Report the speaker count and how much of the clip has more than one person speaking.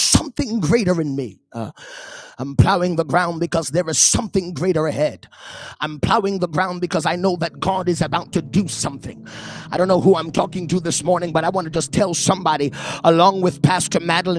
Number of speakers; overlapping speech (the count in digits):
1, no overlap